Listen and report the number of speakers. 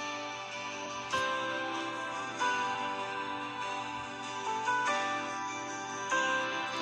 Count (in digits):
0